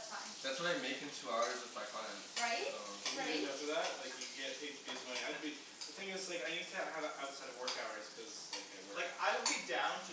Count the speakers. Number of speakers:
4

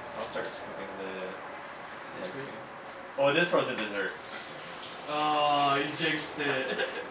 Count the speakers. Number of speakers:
2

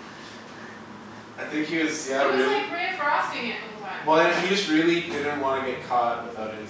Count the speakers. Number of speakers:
2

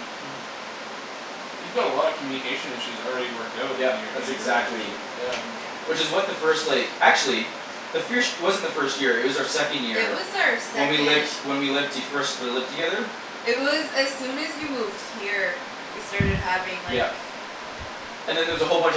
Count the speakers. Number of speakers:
3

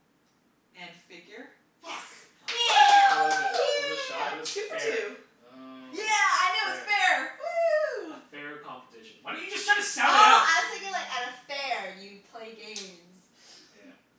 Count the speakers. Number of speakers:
4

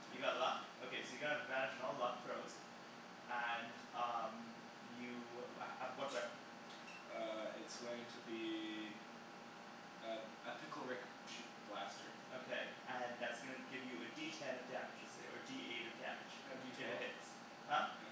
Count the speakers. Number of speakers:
2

